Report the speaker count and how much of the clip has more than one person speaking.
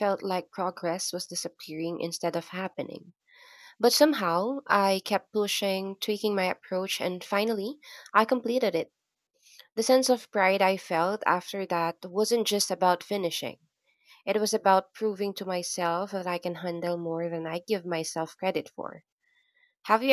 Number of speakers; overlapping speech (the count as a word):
one, no overlap